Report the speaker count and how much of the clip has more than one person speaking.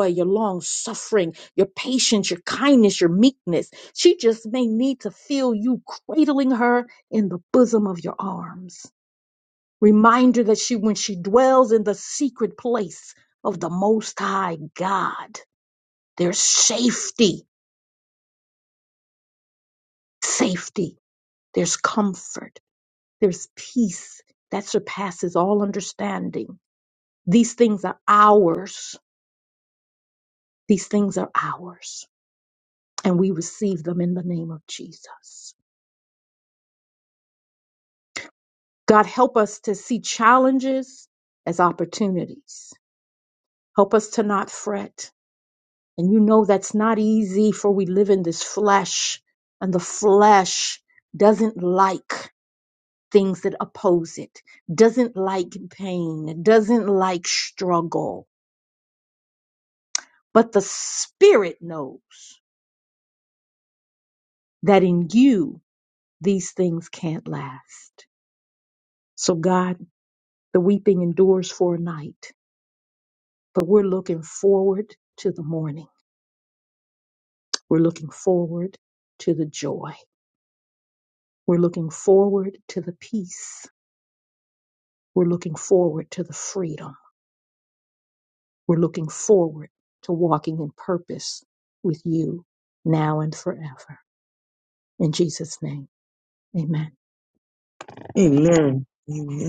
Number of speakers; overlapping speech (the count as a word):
two, no overlap